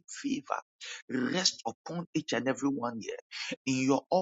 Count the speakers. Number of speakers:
1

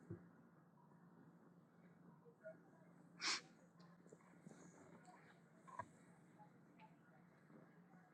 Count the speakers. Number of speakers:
0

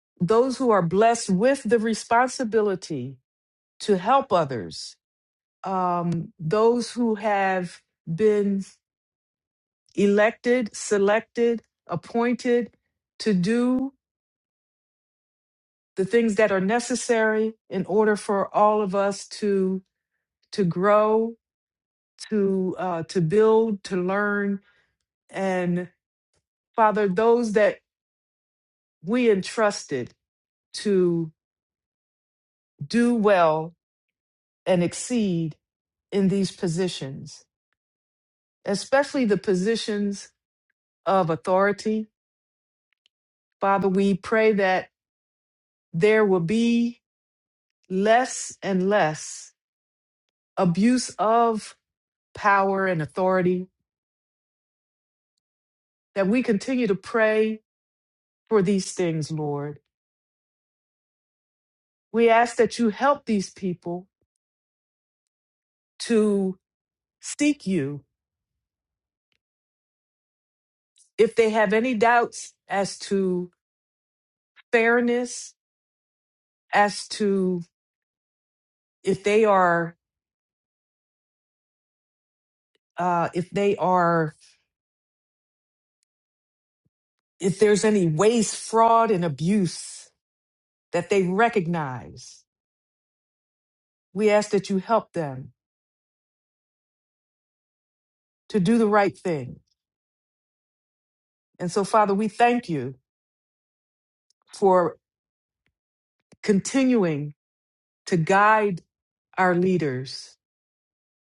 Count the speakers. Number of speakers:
1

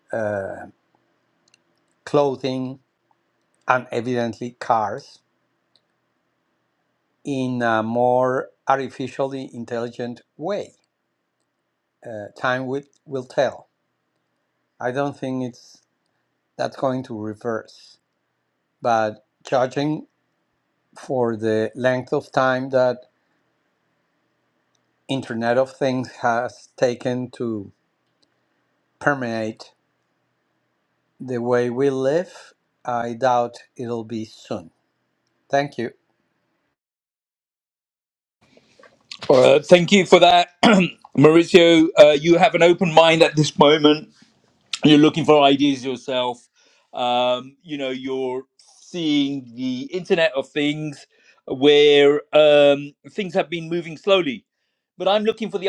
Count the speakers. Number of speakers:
2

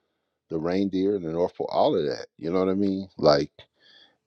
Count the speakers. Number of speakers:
1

